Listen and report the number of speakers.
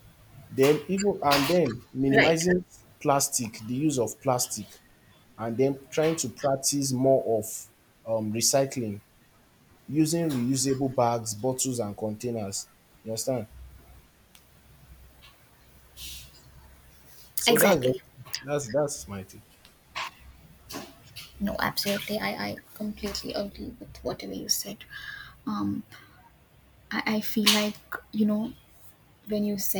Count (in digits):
2